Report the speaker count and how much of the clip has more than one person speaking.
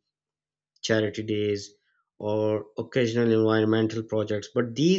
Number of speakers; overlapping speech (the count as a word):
one, no overlap